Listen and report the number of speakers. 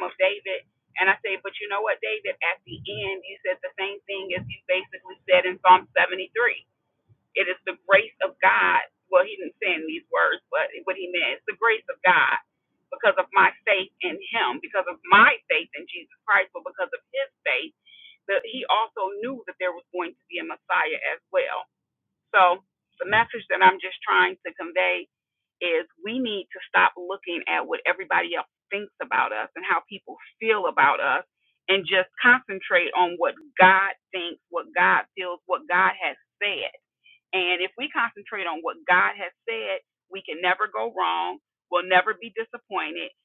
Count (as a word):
one